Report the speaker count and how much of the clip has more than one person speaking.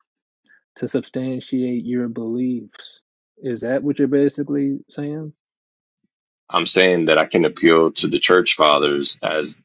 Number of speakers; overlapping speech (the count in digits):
2, no overlap